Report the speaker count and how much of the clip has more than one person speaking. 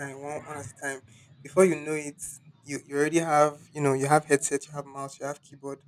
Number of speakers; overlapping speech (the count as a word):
one, no overlap